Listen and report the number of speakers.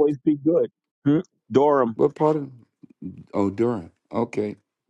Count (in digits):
2